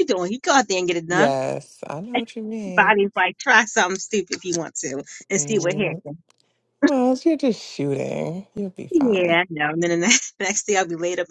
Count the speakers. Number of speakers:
2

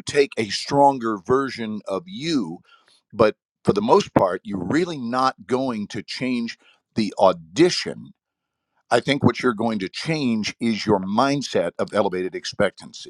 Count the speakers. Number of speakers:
1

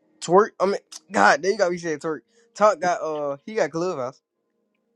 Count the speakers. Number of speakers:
1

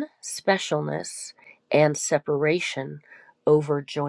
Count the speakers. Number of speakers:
1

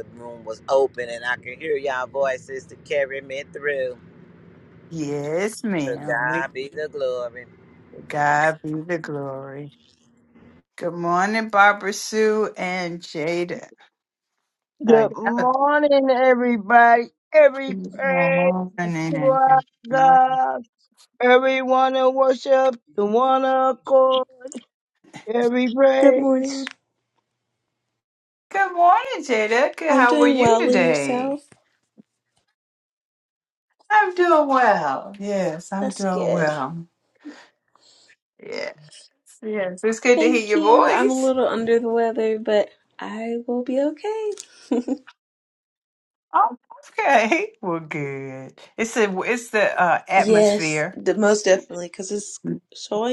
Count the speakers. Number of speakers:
4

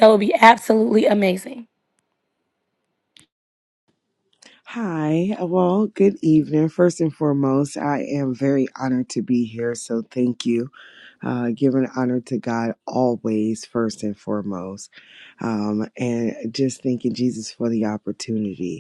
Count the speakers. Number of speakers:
2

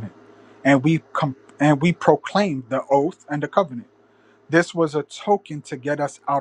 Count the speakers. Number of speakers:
1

